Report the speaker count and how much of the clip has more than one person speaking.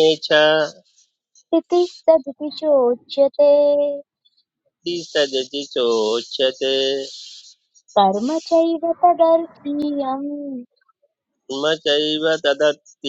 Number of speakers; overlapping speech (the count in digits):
2, no overlap